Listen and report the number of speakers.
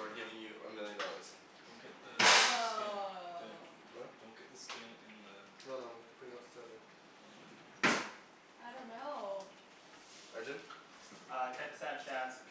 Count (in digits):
4